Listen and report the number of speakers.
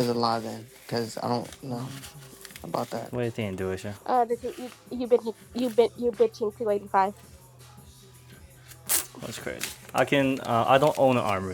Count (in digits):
3